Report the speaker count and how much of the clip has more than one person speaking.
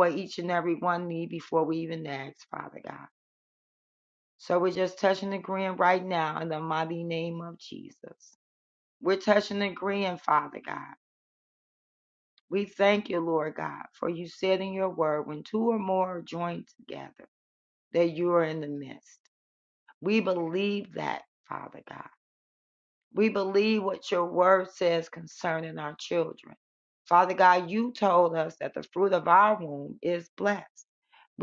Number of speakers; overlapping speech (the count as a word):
one, no overlap